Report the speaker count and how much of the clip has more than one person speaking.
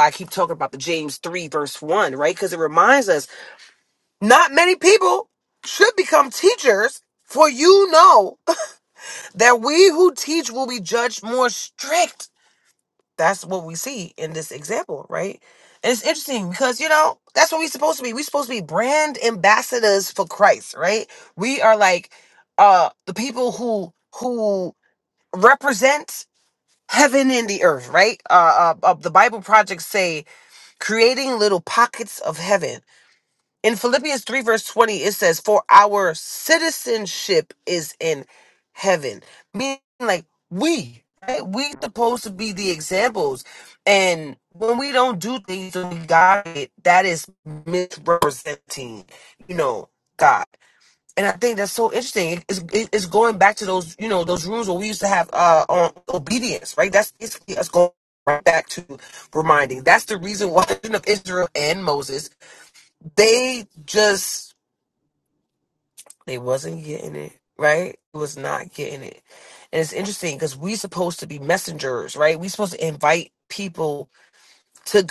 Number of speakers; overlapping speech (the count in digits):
1, no overlap